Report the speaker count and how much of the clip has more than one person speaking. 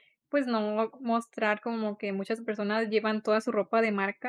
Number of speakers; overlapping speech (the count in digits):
1, no overlap